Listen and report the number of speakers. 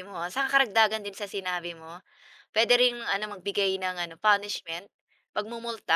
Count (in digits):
1